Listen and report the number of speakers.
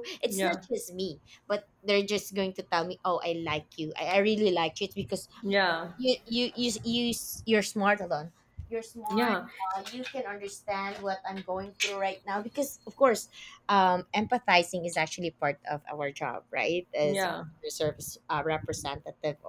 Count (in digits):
2